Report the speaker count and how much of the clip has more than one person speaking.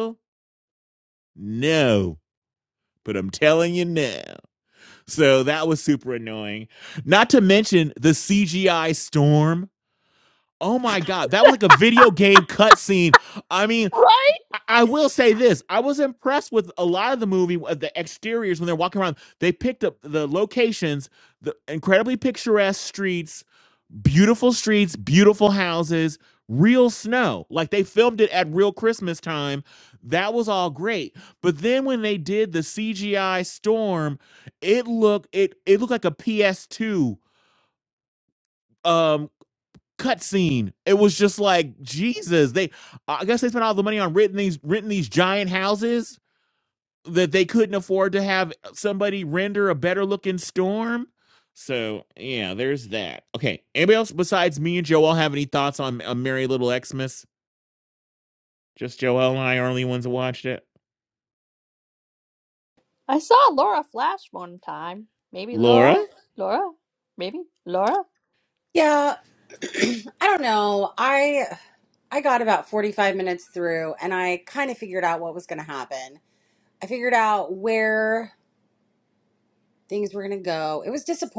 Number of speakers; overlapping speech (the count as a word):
three, about 1%